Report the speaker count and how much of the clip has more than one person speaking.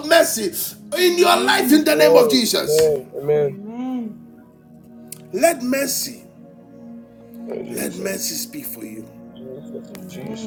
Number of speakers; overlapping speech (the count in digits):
3, about 28%